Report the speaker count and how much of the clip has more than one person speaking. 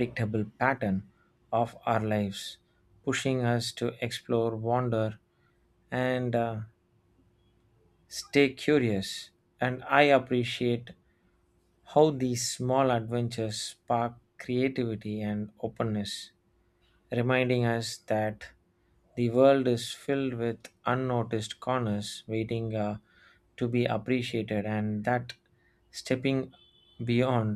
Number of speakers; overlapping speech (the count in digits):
1, no overlap